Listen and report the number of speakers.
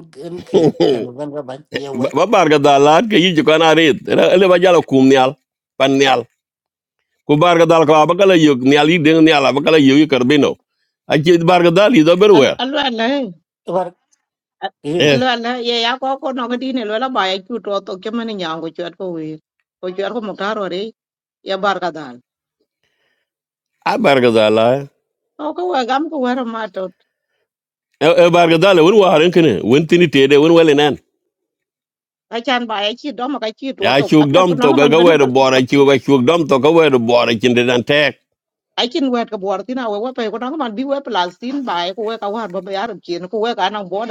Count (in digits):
3